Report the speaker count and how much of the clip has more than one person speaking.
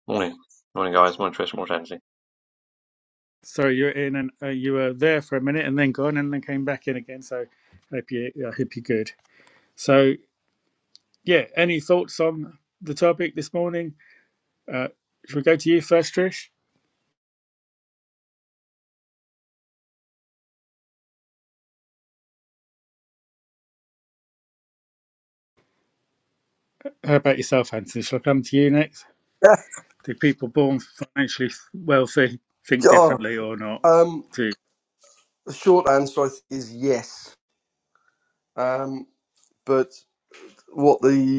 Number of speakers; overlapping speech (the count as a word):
three, about 1%